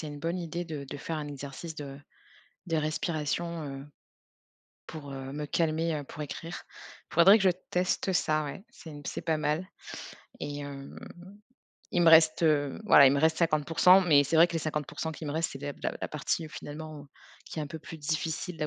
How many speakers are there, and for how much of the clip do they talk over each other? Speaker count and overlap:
1, no overlap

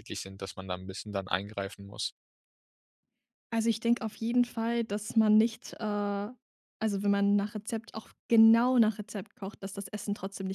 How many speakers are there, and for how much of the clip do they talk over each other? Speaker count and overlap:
2, no overlap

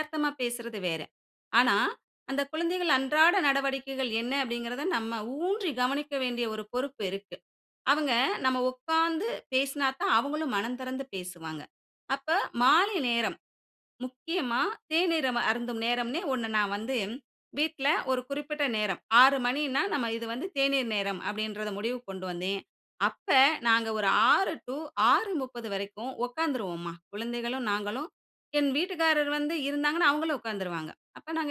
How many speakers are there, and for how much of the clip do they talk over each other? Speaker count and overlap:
1, no overlap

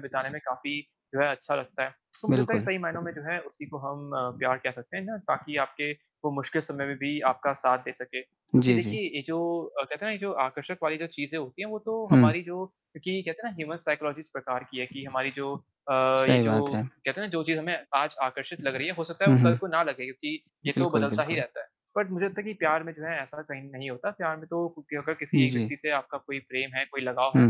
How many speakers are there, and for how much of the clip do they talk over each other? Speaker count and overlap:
2, about 11%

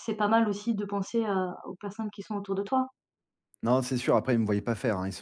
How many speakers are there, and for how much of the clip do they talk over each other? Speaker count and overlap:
2, no overlap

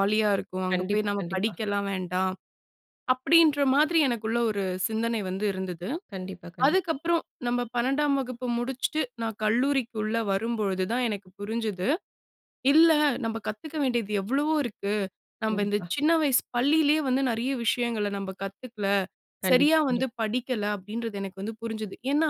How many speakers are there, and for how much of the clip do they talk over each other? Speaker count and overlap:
2, about 8%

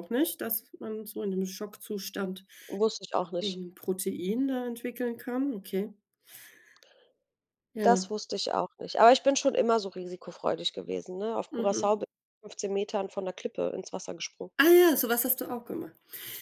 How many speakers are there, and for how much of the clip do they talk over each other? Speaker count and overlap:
2, about 5%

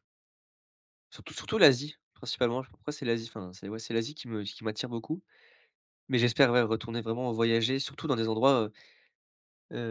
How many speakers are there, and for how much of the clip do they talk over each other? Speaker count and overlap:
1, no overlap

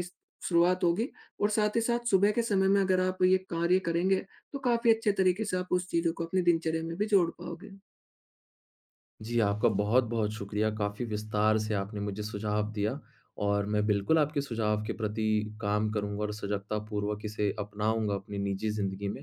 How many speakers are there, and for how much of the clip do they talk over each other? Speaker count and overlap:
2, no overlap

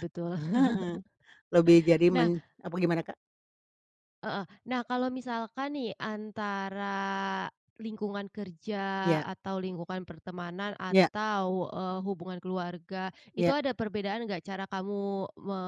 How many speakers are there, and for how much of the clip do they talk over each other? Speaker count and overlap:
2, about 5%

